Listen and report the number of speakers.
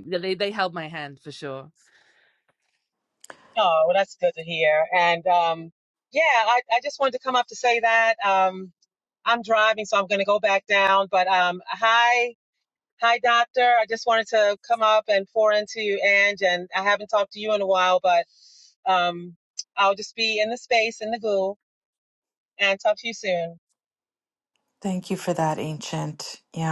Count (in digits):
3